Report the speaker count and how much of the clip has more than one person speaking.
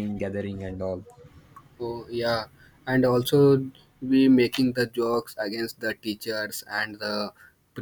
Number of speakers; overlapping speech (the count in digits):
2, no overlap